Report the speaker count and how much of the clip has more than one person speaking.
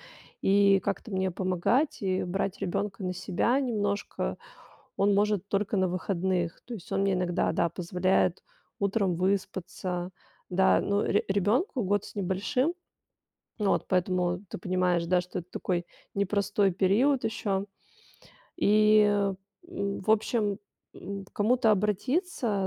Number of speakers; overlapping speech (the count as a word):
one, no overlap